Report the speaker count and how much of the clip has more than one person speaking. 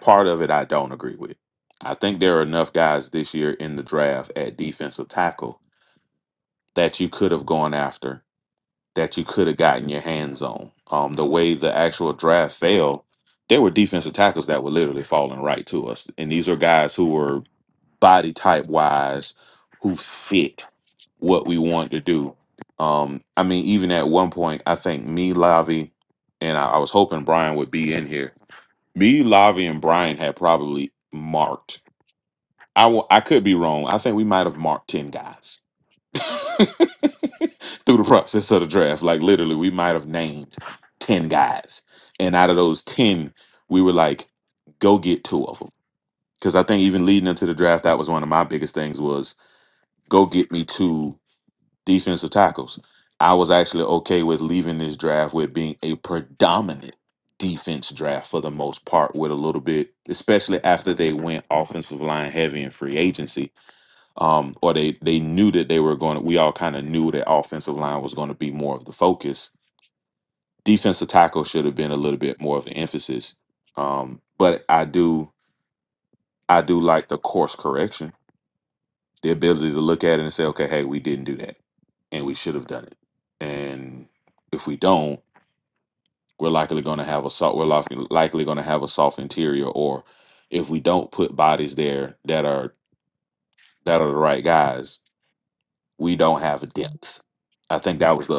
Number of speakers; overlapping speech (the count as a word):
one, no overlap